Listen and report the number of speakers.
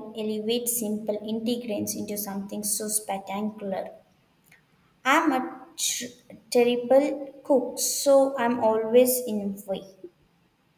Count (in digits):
1